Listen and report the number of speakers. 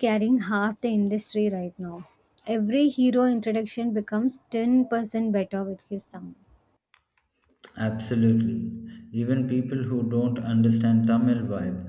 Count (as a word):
two